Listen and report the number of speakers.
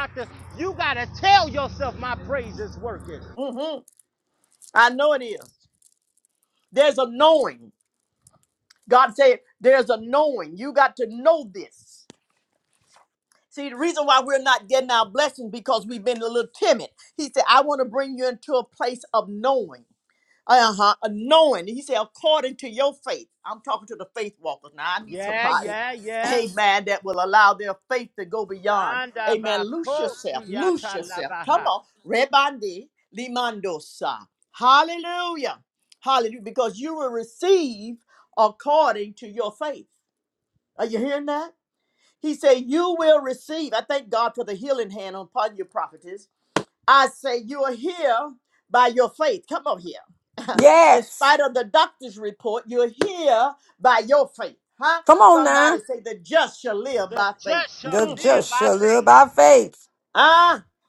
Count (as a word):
three